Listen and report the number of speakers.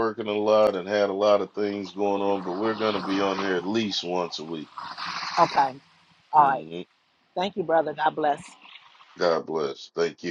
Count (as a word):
two